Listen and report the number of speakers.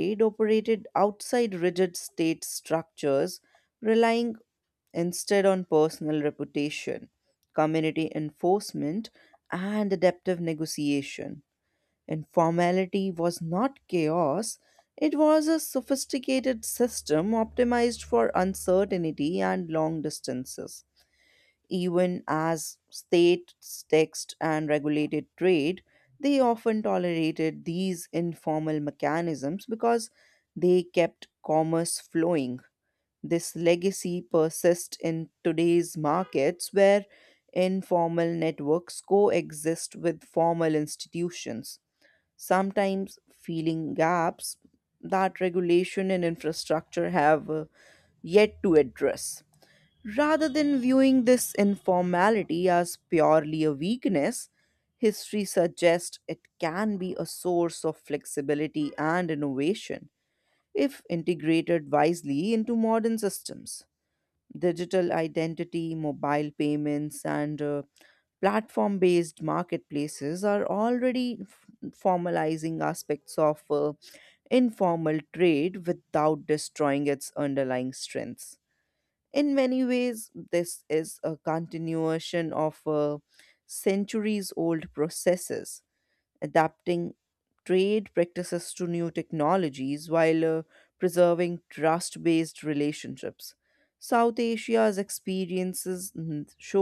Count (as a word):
one